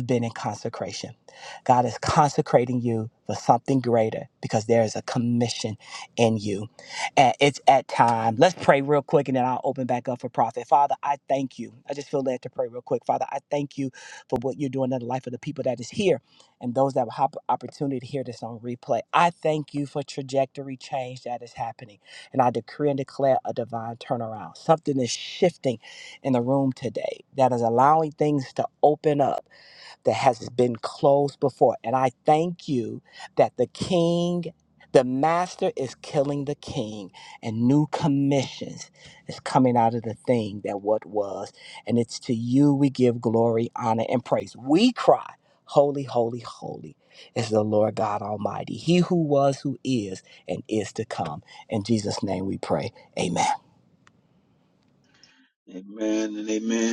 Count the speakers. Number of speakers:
two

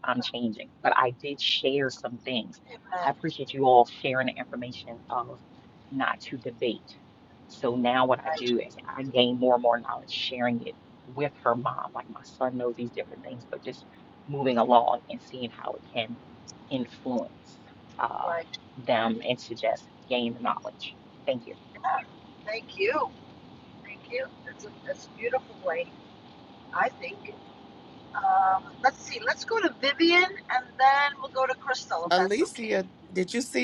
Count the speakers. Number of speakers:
three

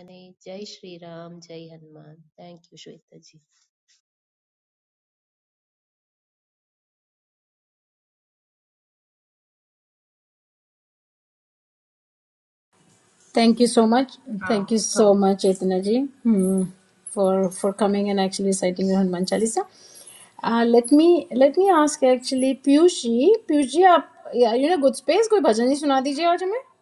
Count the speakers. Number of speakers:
two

